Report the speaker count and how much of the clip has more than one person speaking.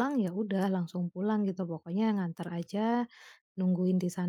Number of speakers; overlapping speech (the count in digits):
1, no overlap